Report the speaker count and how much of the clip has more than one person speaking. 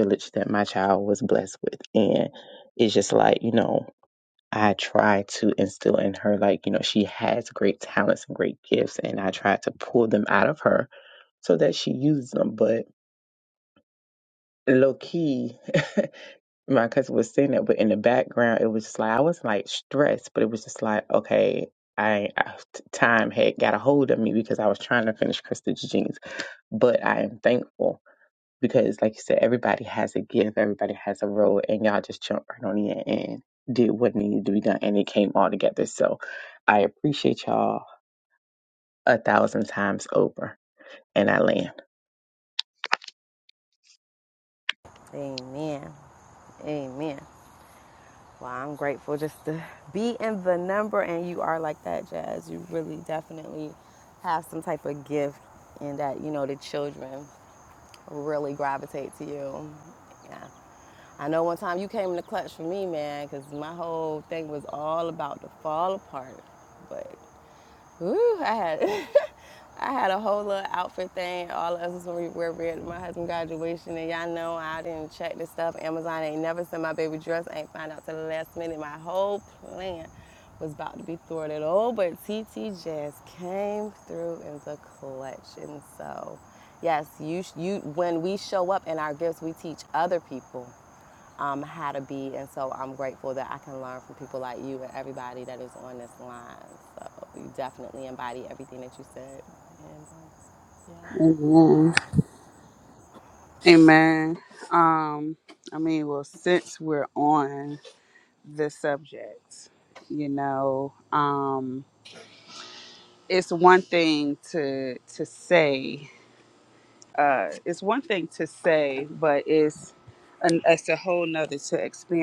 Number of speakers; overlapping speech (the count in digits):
3, under 1%